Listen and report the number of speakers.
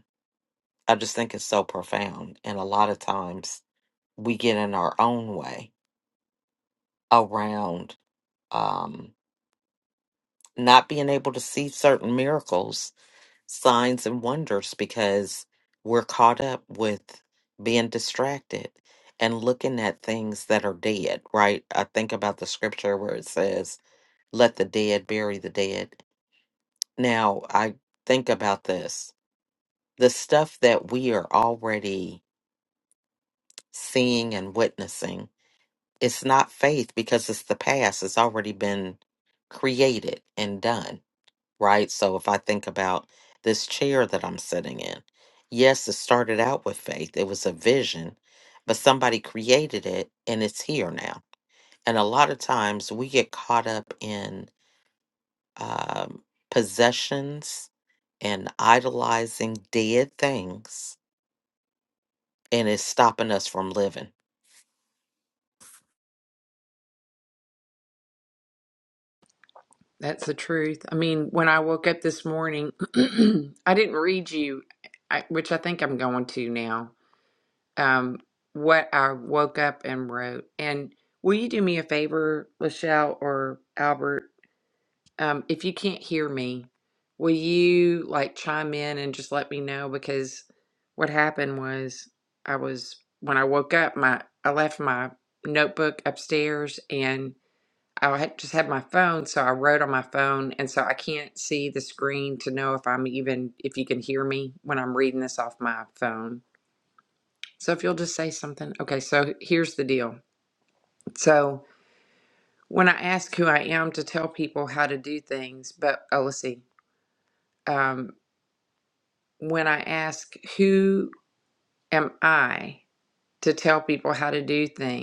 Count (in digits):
2